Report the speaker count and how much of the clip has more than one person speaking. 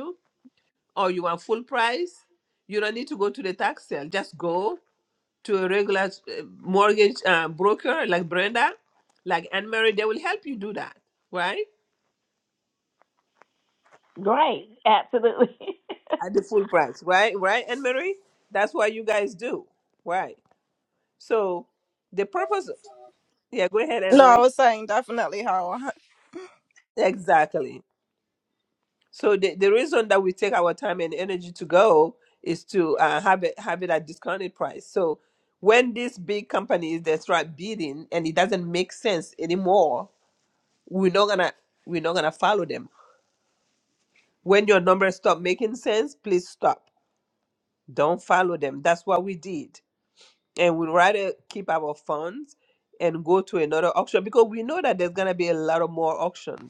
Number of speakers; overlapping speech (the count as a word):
three, about 1%